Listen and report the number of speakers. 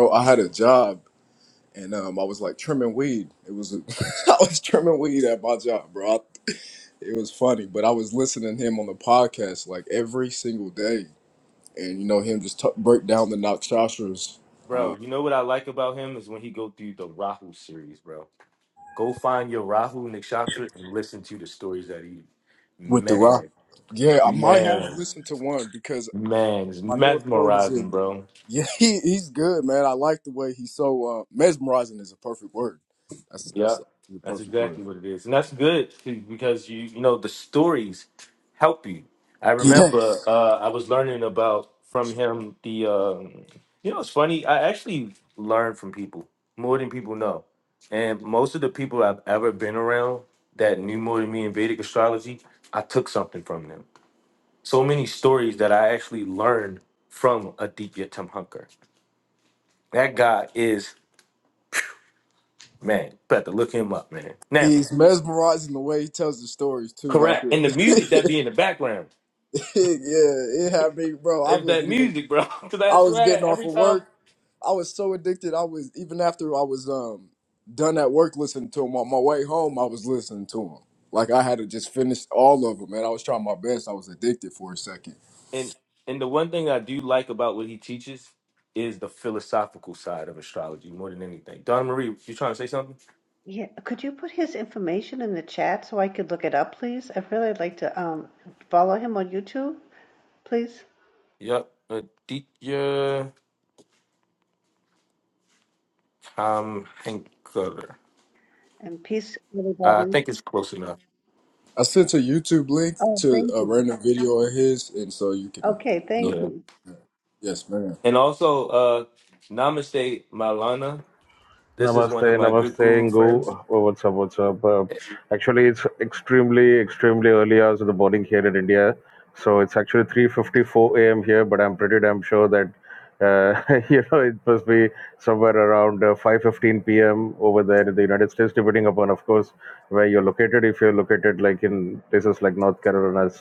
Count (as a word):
four